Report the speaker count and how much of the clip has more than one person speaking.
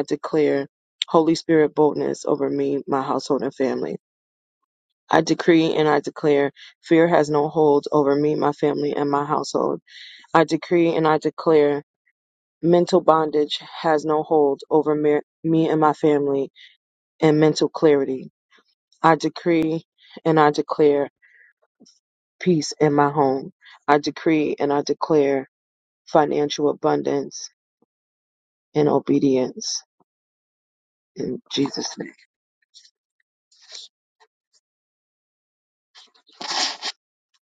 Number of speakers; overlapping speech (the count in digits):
1, no overlap